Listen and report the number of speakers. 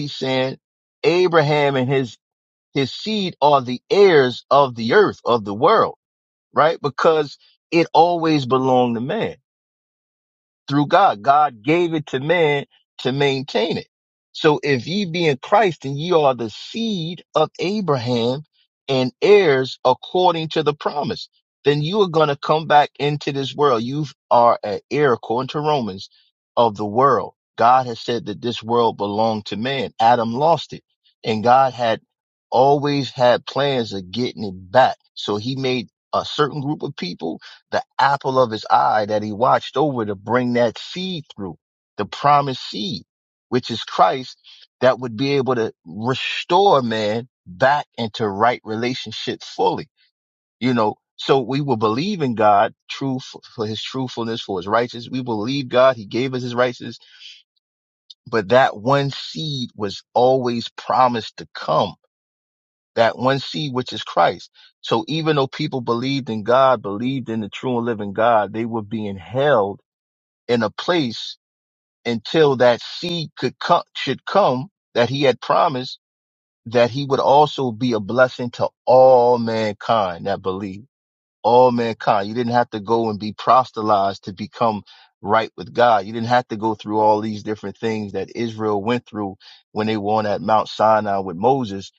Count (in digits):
1